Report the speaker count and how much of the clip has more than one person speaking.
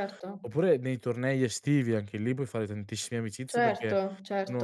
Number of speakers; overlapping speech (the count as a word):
two, about 15%